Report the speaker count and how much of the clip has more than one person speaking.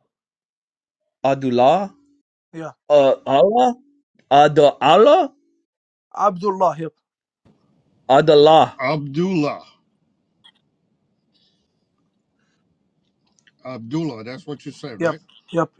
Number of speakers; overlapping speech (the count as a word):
three, about 1%